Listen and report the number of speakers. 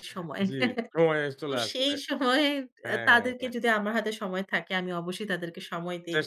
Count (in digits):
2